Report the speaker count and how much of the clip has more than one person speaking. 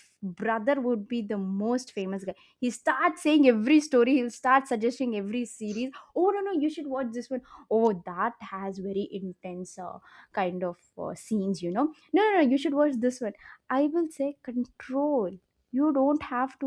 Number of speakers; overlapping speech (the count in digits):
1, no overlap